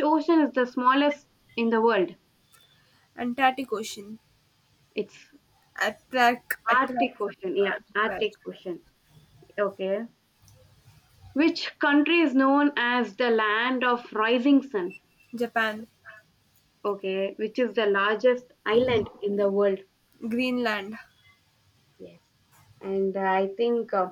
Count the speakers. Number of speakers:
2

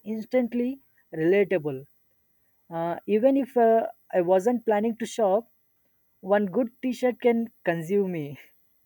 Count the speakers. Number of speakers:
1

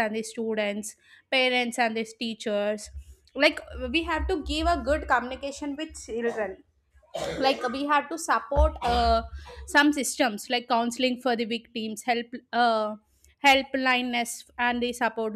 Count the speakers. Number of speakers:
1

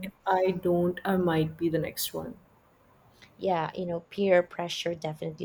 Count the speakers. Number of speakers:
2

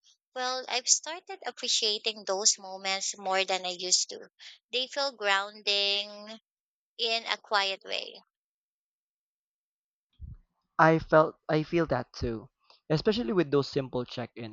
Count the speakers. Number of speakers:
2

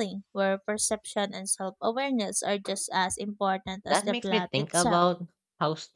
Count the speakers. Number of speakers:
2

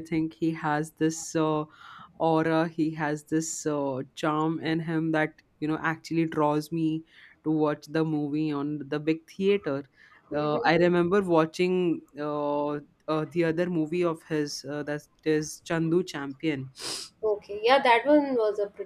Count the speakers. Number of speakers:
2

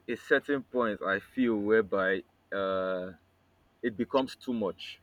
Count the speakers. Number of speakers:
1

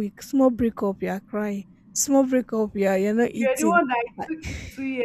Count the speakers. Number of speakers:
2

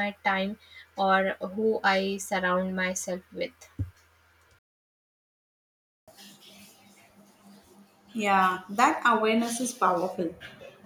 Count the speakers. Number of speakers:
2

